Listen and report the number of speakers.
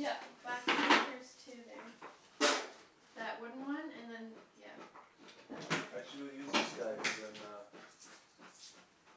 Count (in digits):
2